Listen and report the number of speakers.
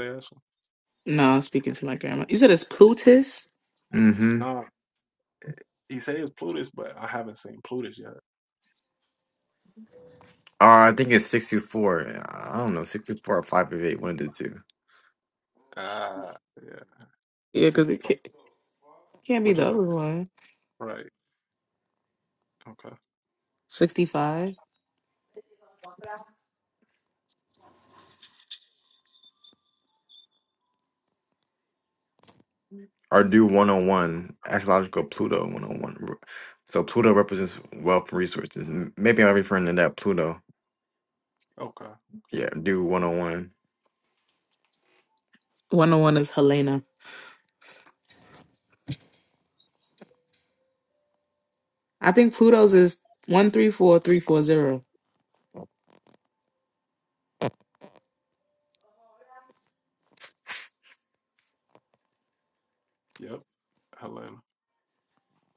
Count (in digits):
3